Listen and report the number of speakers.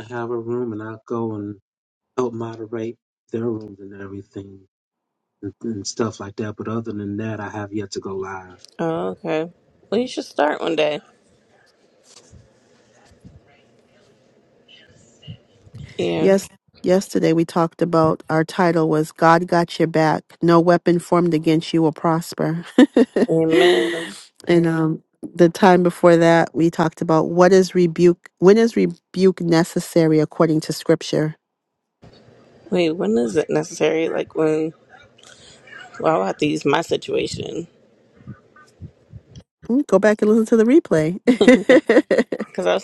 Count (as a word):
three